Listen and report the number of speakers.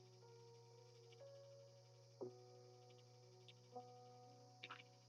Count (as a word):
zero